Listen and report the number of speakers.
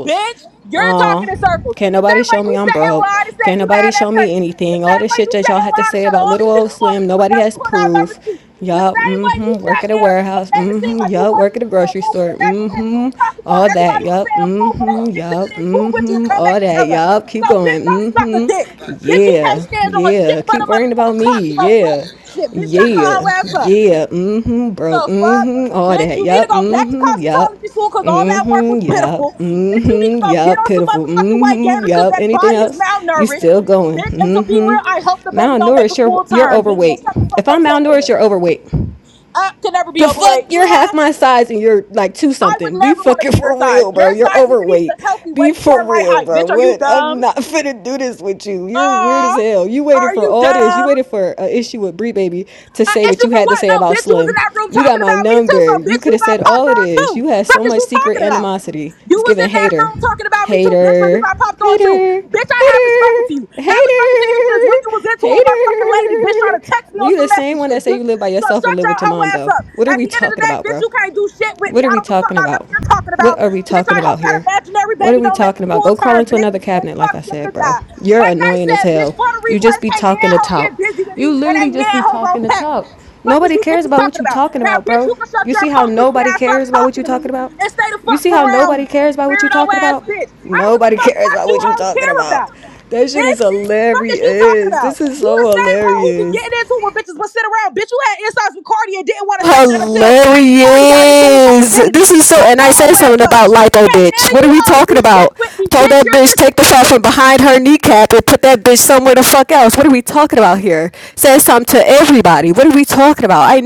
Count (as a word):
two